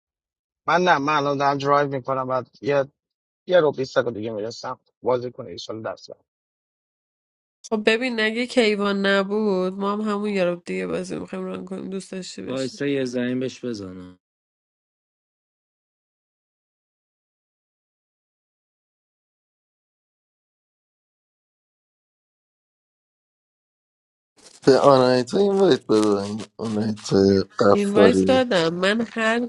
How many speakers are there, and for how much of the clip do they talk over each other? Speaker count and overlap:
four, about 3%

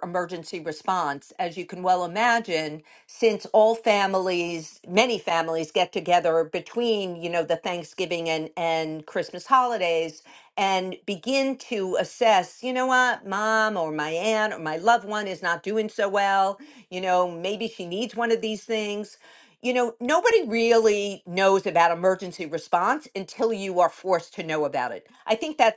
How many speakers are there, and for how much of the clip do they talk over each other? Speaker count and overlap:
one, no overlap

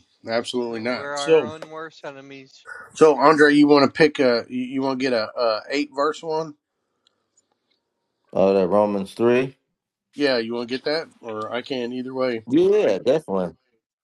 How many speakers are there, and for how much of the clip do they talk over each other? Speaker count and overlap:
three, about 6%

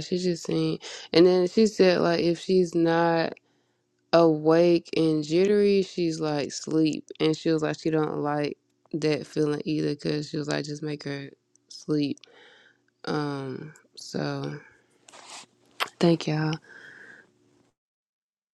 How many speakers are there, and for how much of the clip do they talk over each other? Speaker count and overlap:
one, no overlap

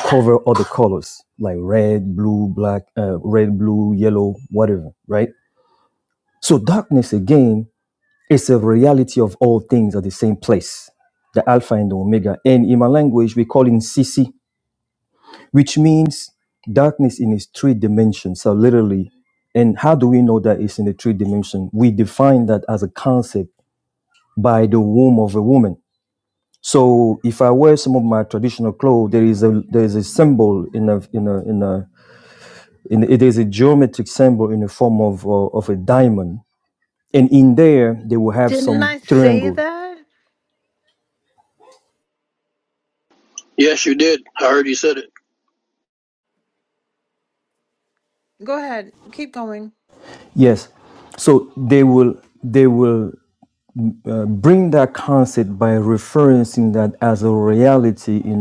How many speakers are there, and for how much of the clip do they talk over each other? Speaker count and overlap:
three, about 2%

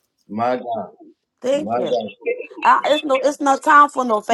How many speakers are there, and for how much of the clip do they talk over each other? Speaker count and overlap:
two, about 10%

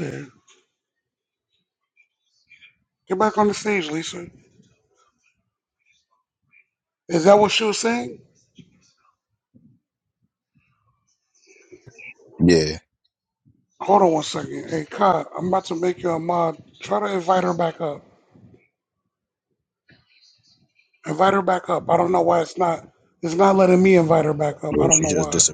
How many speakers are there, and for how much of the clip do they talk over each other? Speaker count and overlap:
two, about 3%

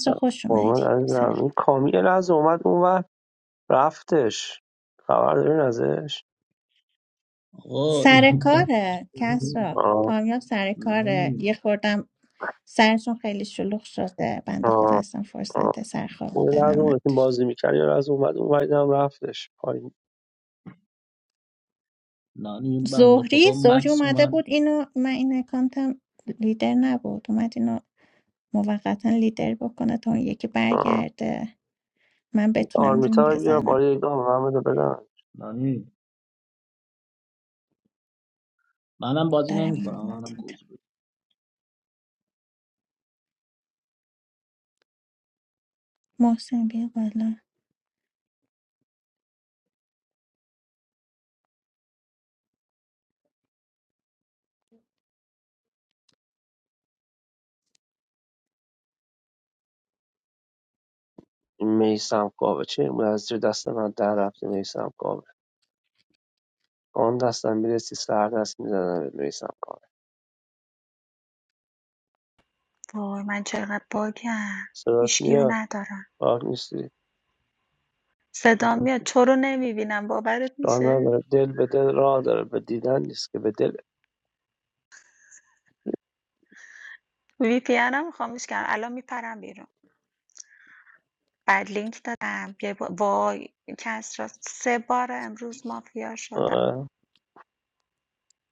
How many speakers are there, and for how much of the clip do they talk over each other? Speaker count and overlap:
four, about 9%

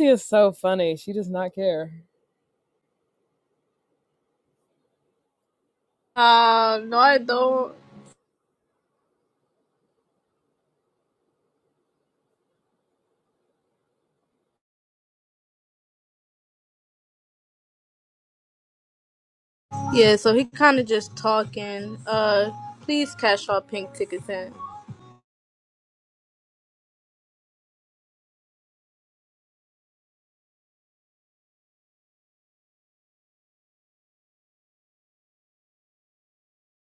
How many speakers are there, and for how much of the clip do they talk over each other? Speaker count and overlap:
two, no overlap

